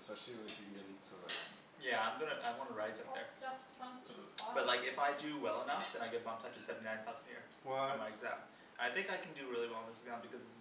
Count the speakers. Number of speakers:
3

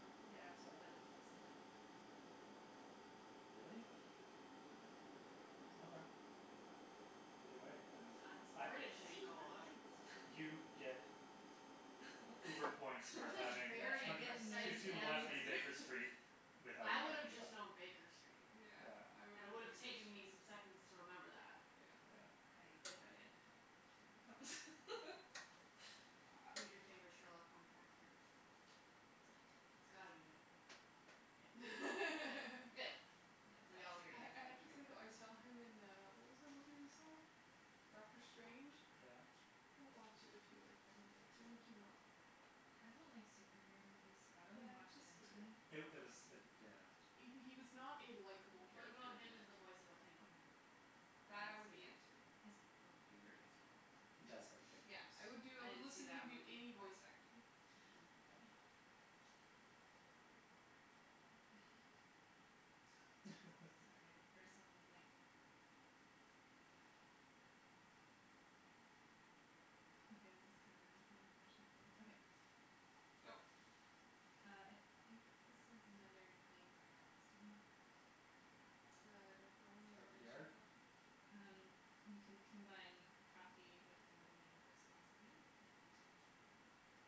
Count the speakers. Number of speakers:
4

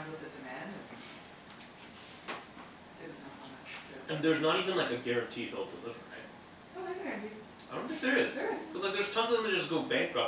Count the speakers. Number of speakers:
2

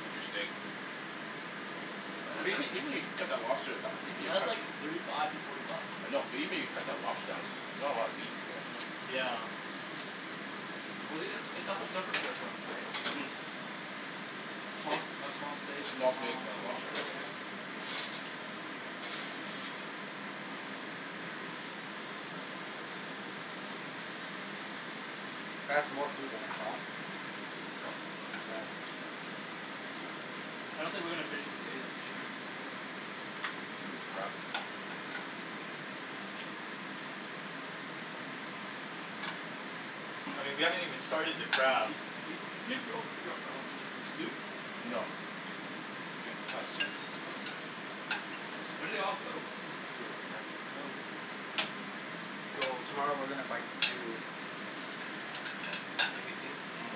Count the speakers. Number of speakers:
4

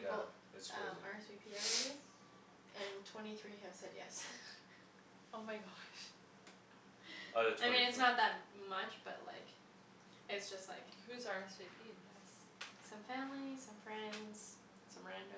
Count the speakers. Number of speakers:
3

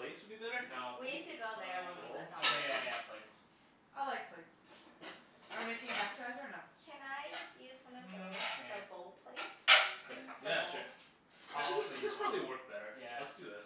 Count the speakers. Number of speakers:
4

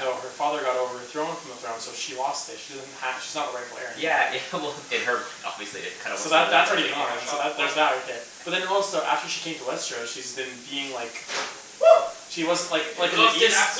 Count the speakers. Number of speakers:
3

